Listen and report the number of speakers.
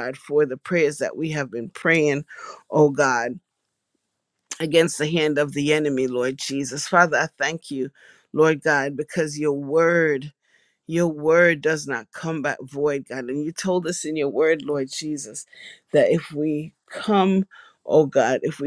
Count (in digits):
1